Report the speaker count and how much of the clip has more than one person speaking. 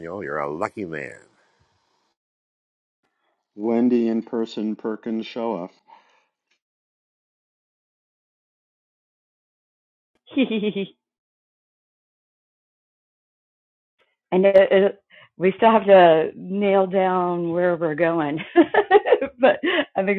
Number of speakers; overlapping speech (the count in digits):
3, no overlap